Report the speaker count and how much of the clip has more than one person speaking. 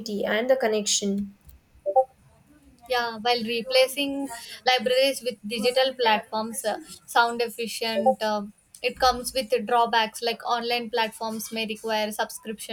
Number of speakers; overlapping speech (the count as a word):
two, no overlap